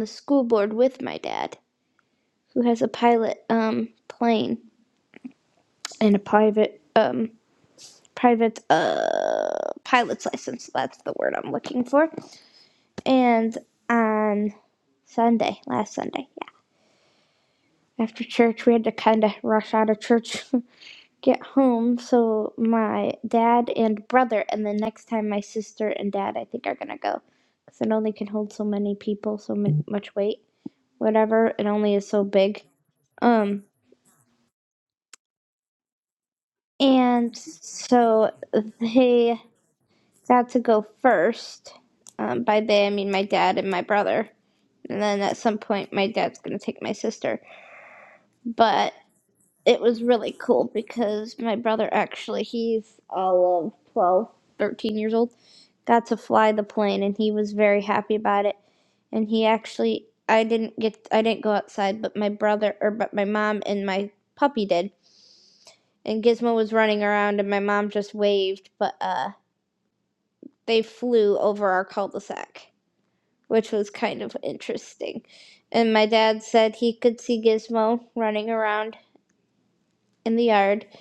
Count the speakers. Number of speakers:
one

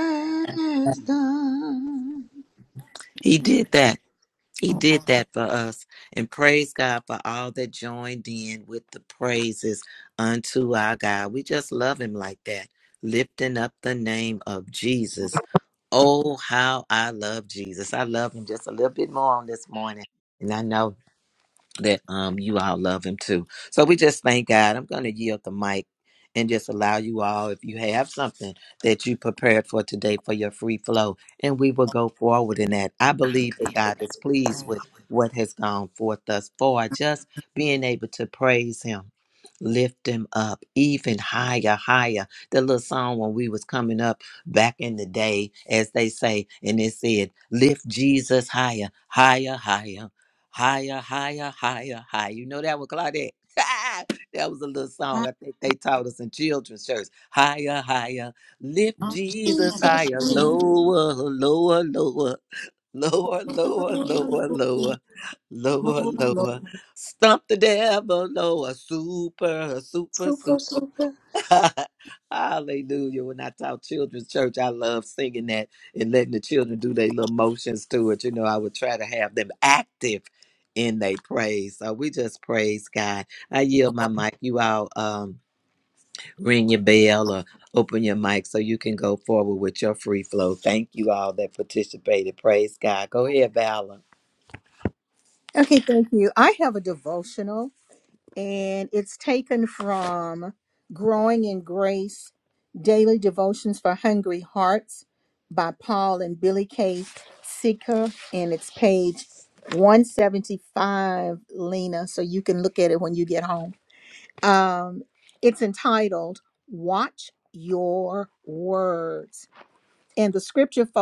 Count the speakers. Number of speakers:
three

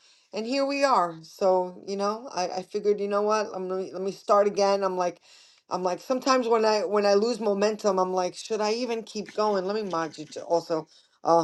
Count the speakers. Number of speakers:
one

